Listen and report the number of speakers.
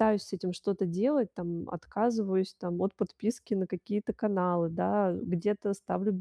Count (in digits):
1